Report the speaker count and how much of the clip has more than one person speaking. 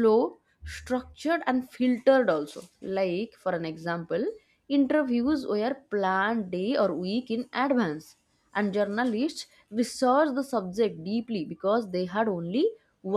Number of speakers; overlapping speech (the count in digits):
1, no overlap